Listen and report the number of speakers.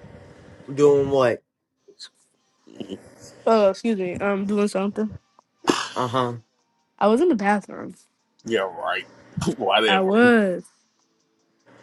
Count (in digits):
3